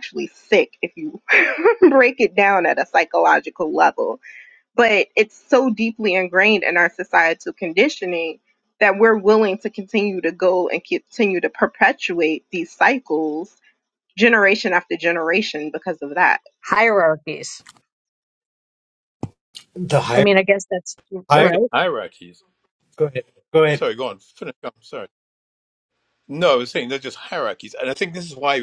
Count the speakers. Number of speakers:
four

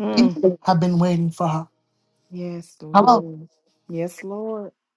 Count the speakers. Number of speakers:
two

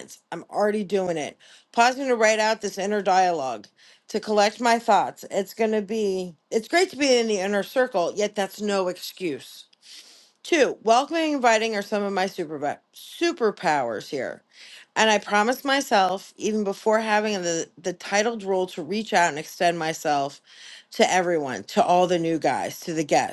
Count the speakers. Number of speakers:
one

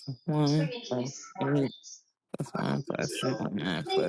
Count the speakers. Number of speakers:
one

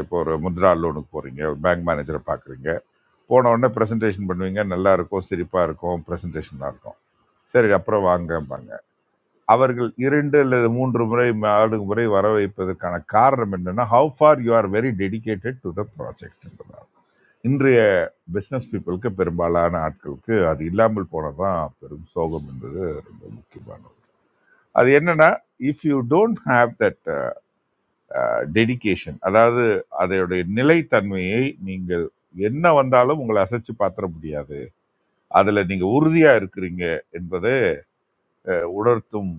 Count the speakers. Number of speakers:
one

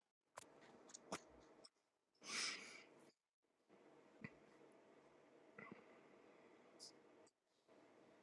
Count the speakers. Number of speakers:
zero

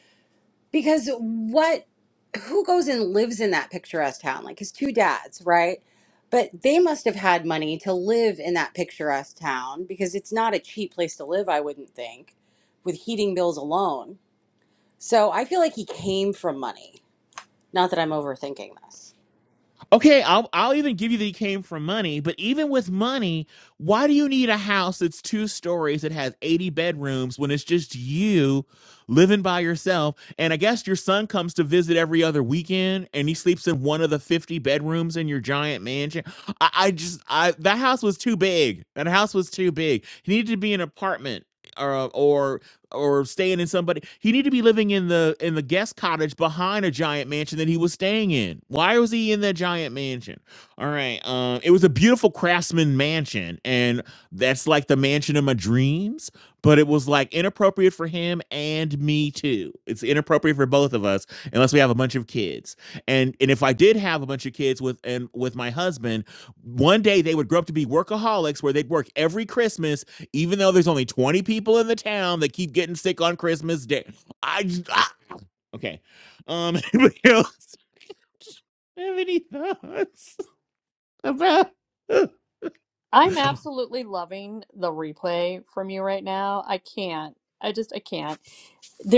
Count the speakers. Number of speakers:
three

